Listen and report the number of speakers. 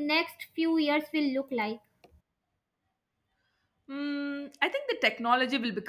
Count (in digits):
2